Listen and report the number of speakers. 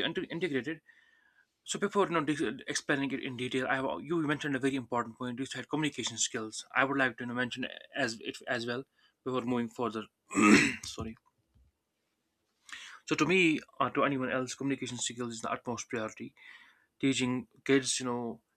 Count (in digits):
1